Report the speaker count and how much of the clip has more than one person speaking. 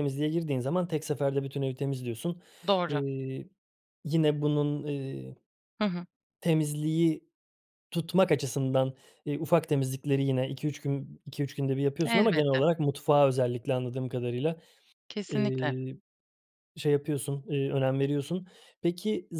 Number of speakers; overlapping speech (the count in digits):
2, about 6%